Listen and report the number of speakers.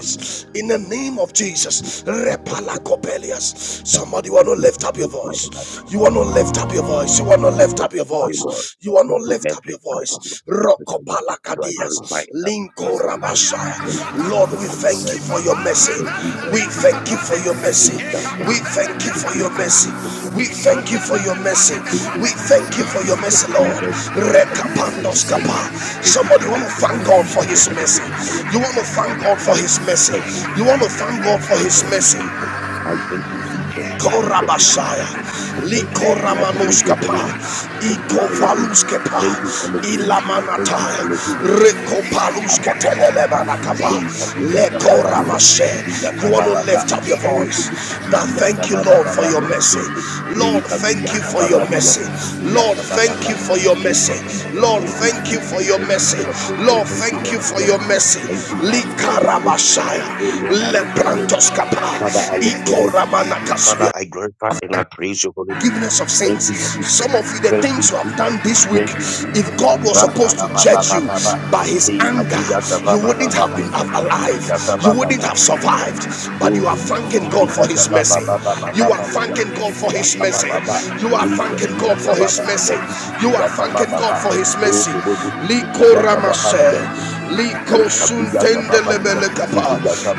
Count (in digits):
2